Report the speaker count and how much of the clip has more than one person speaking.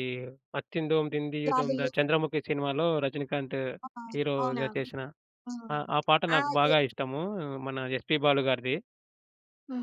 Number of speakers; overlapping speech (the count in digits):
2, about 16%